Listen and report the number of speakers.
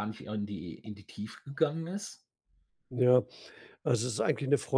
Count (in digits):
2